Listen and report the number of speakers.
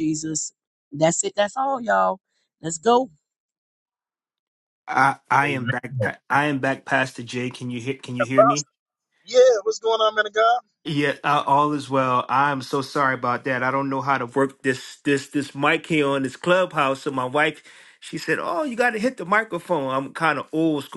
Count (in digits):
3